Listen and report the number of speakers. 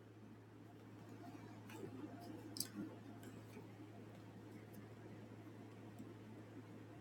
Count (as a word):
zero